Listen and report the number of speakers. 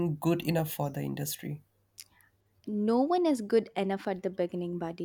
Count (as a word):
two